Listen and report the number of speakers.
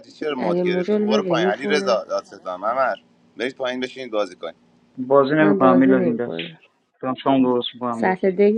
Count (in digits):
3